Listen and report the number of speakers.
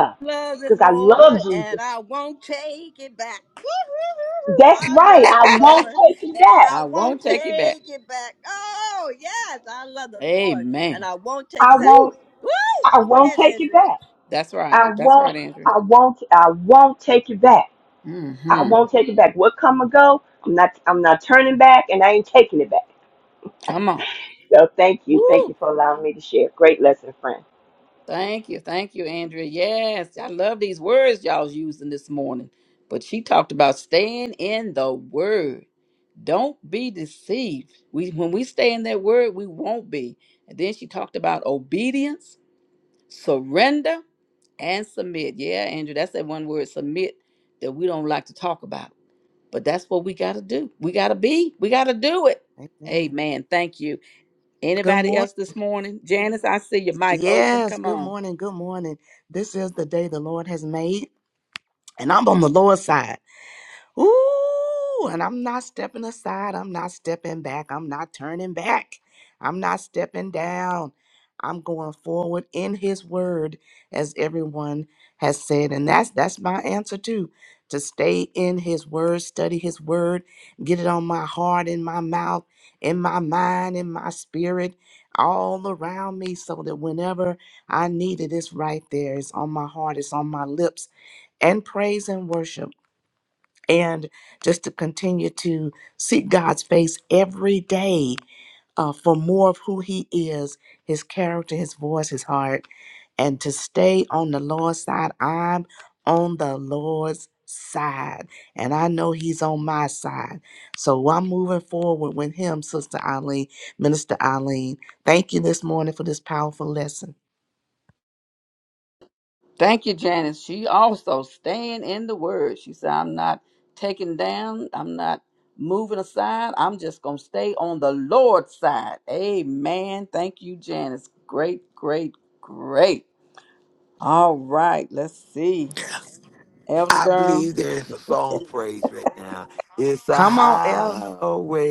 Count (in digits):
5